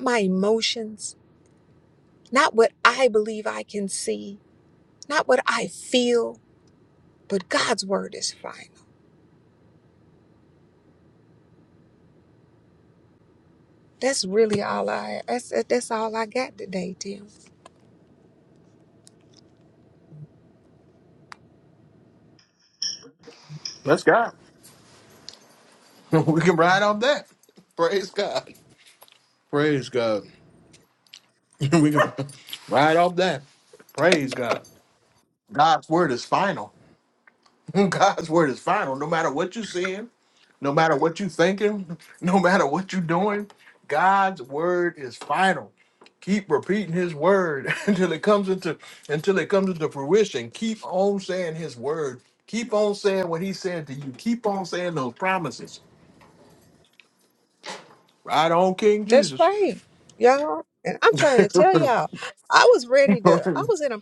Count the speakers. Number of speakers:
2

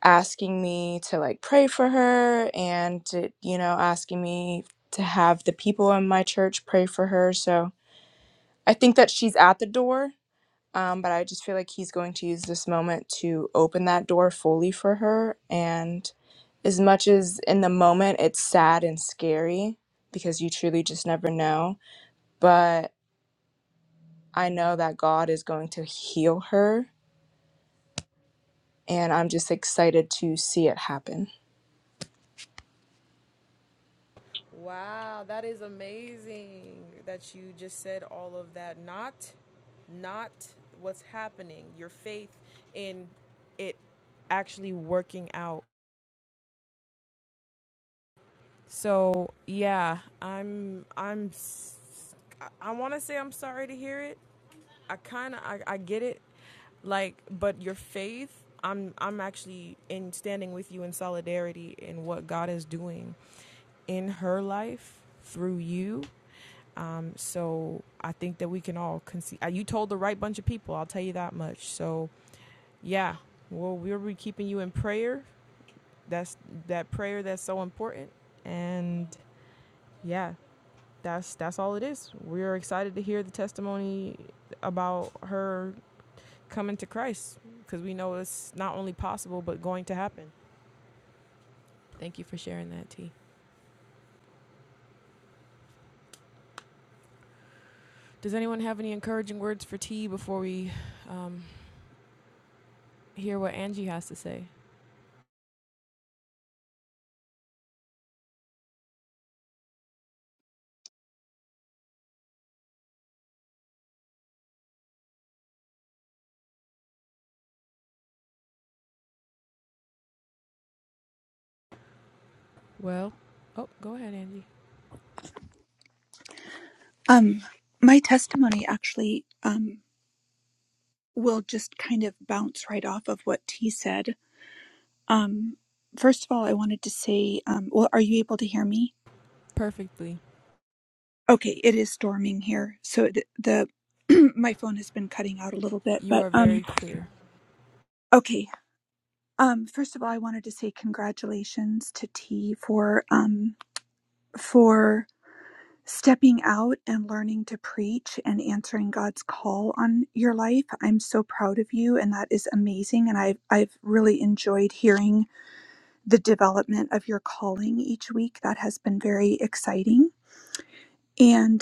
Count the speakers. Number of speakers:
3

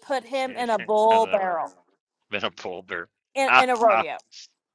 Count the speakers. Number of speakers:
2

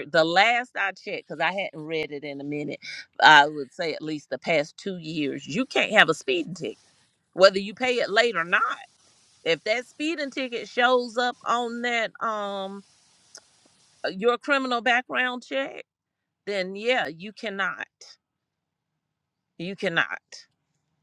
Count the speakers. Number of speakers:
1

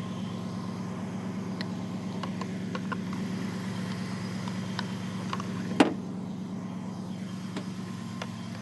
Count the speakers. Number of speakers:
0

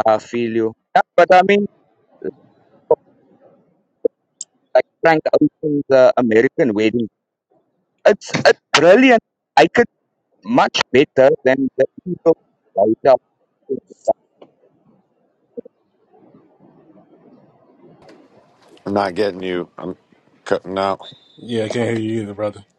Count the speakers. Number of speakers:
3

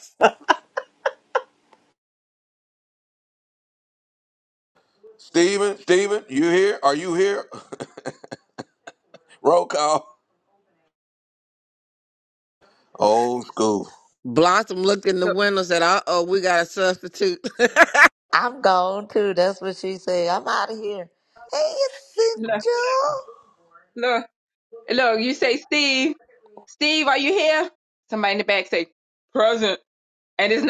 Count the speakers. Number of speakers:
4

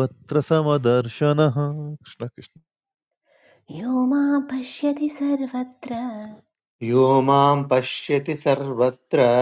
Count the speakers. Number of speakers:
3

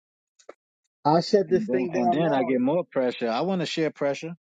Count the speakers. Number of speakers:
2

